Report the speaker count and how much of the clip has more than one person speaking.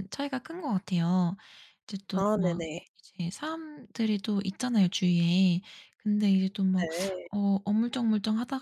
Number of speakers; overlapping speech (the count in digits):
2, about 7%